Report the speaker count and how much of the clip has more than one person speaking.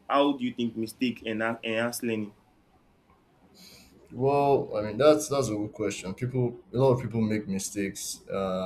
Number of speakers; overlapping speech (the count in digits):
2, no overlap